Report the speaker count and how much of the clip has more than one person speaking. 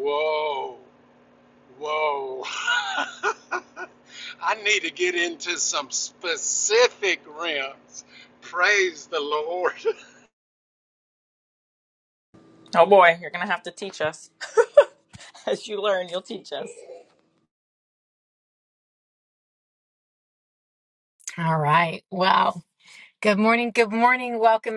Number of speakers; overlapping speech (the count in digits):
3, no overlap